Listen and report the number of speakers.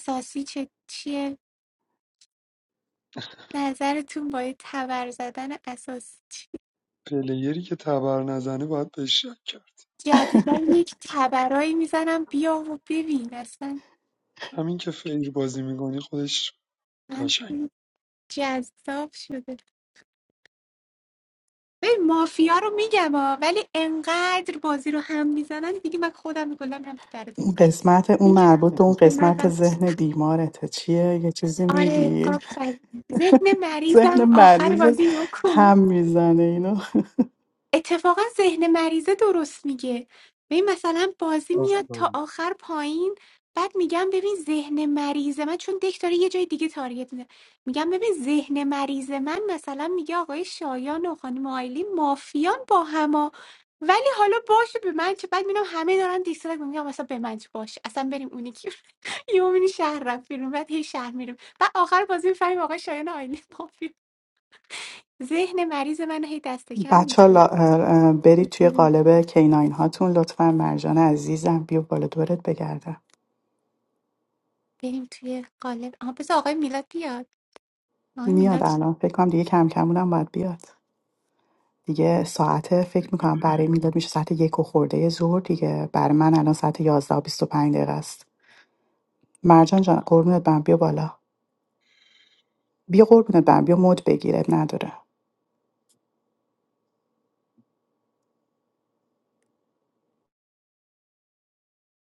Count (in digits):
3